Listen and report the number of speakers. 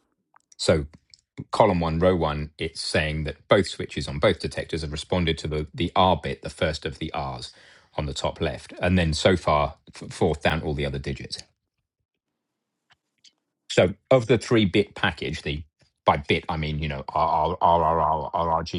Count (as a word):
one